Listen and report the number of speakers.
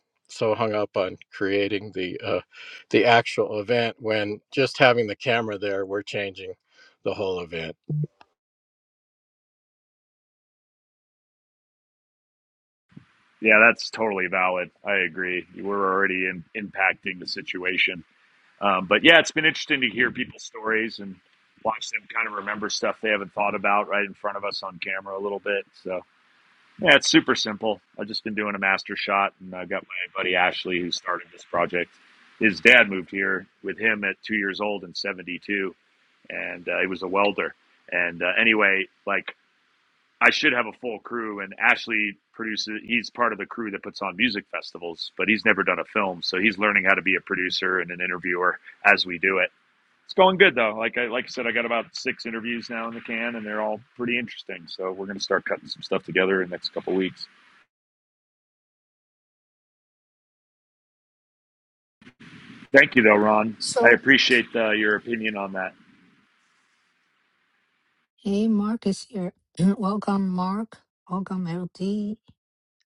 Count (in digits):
3